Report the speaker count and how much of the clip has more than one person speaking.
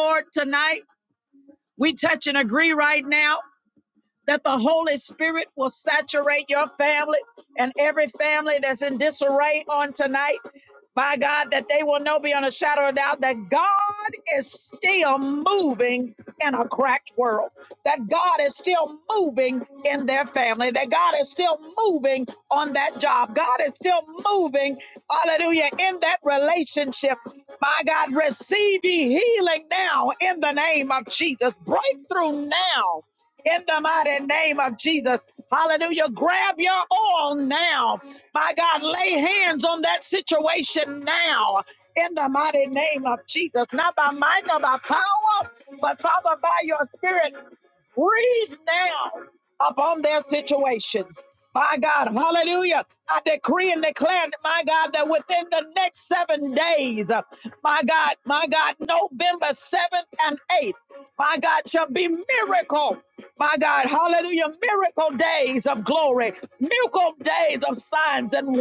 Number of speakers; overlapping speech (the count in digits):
1, no overlap